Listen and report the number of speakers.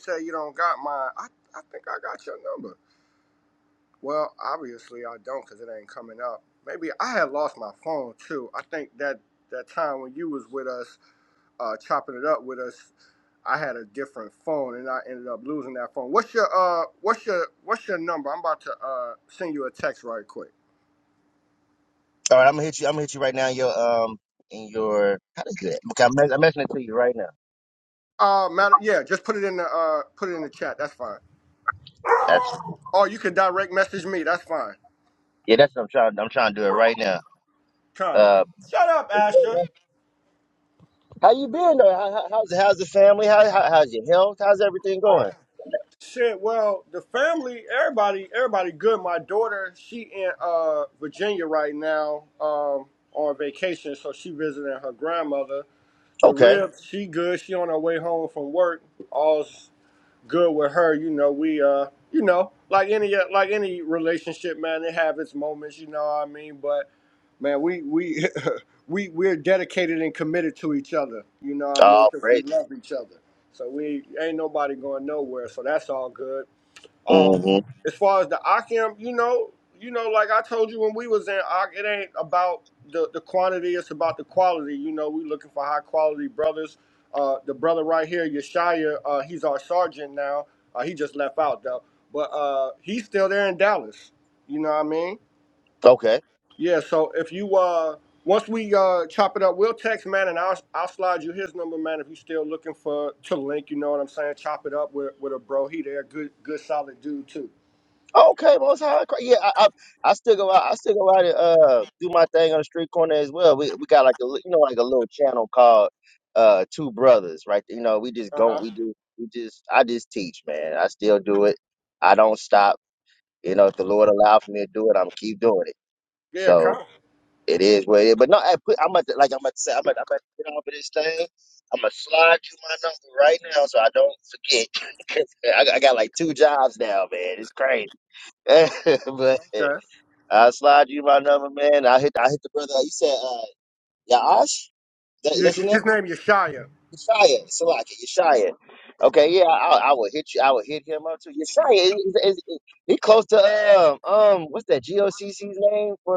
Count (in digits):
2